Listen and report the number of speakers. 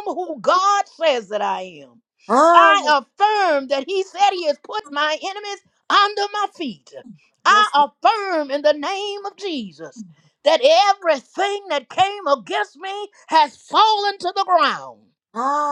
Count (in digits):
2